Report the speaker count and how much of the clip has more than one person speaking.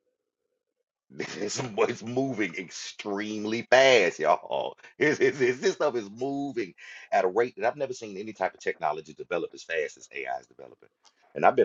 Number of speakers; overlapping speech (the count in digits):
1, no overlap